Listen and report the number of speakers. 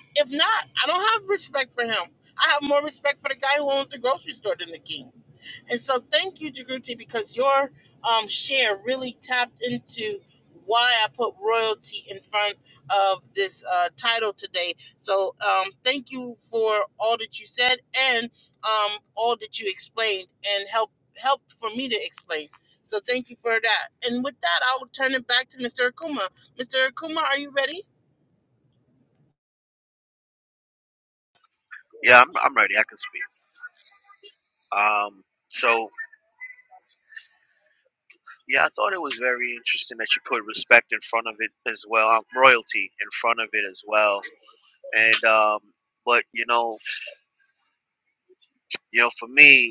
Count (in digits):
2